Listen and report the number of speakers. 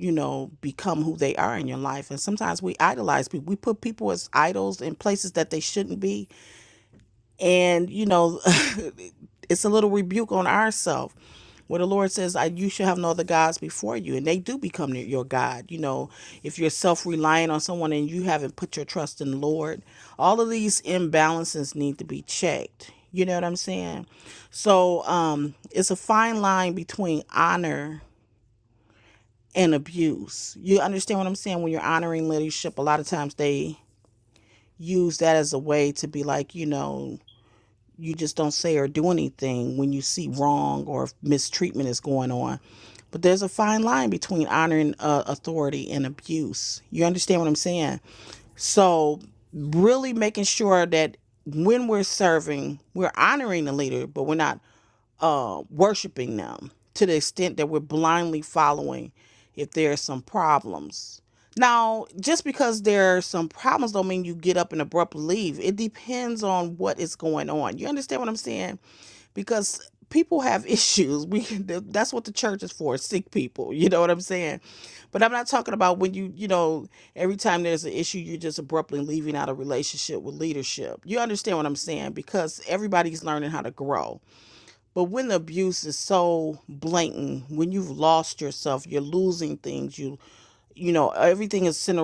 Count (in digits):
1